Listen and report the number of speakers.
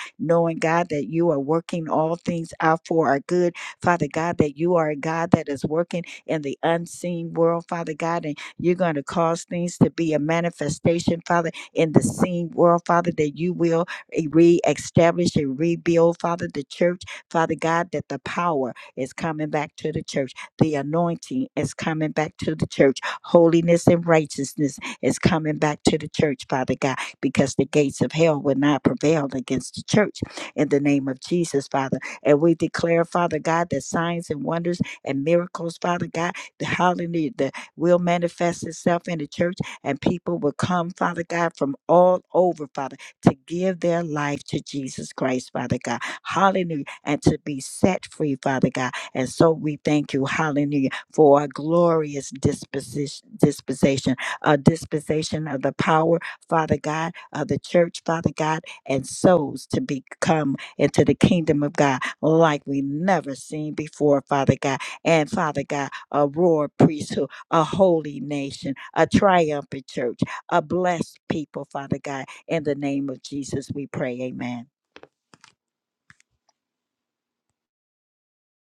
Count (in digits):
1